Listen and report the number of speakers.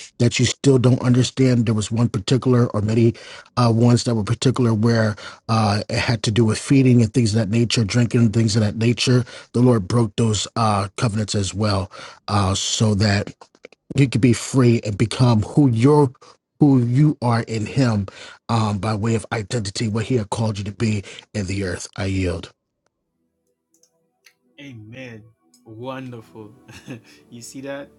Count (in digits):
2